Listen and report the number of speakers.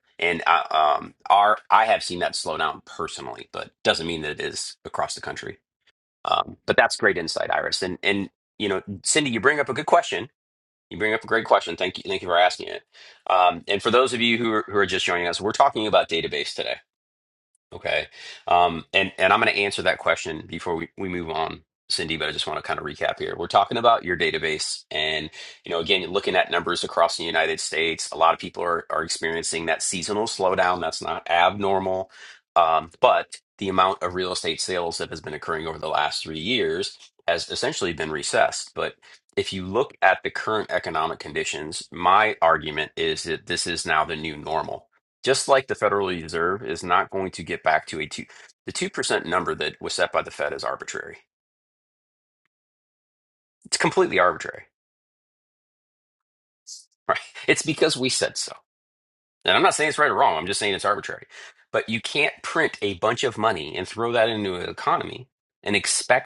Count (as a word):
one